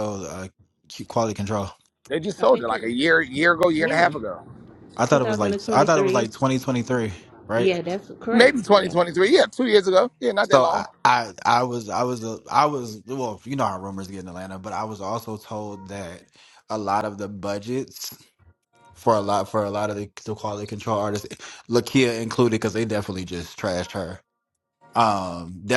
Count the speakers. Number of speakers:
three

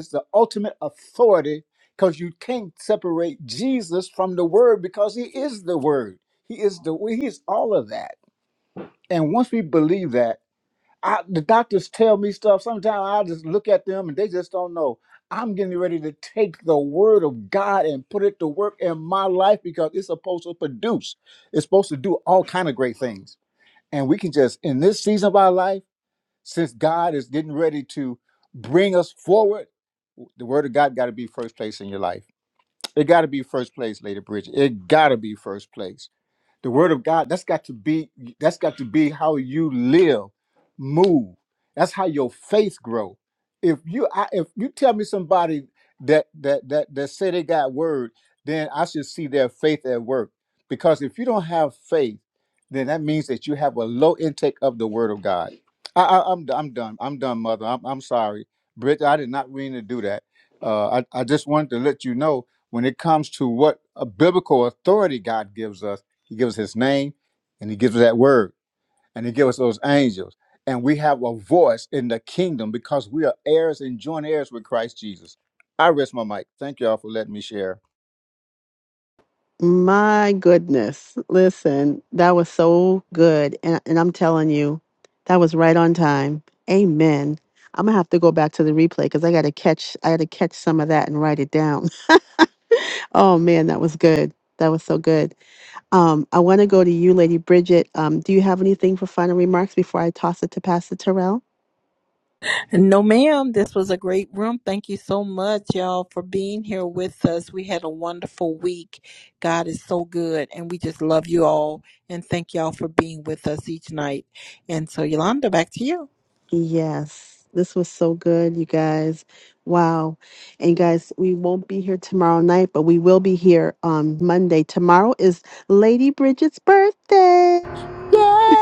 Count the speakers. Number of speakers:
three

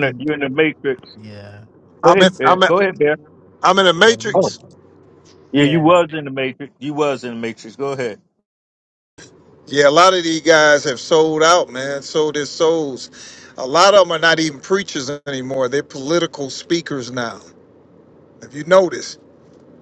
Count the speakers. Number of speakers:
three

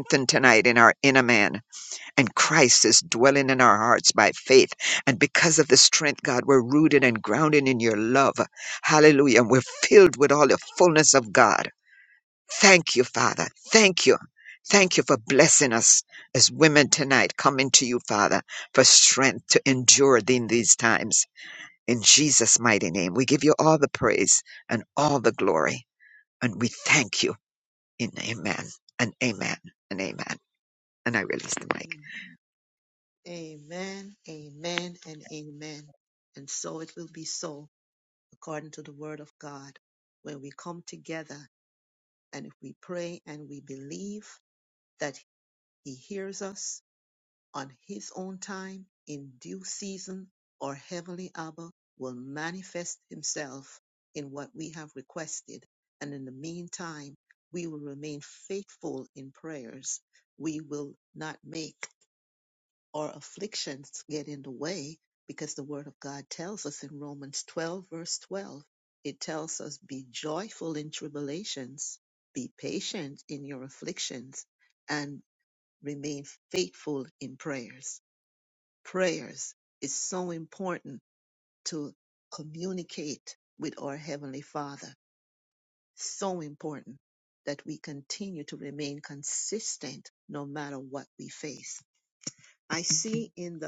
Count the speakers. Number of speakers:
two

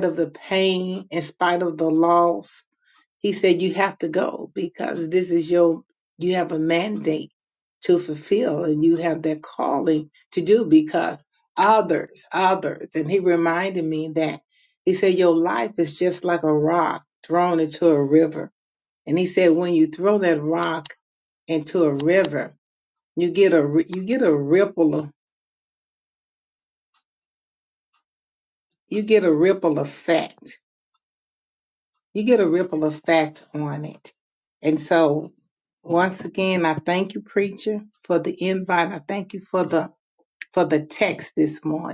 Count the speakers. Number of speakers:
one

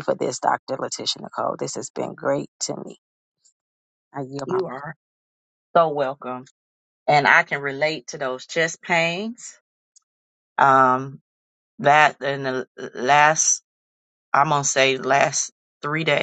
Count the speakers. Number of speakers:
two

